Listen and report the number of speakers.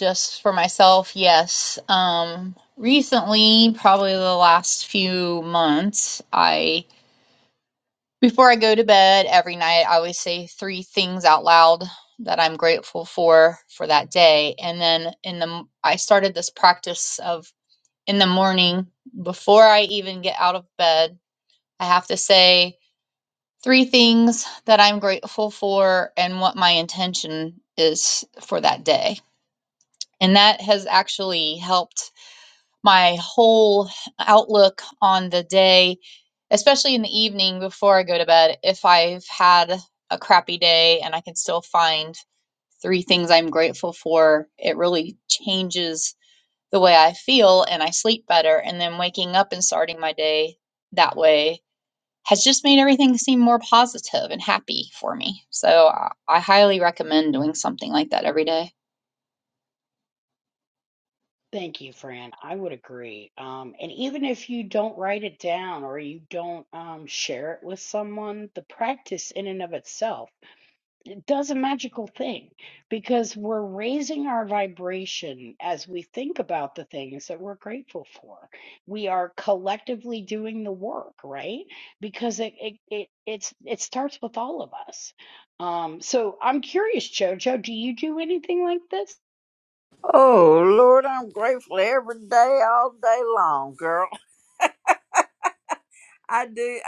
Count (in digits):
3